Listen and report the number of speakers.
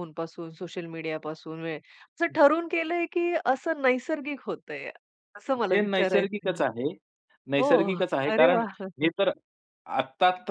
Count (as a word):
two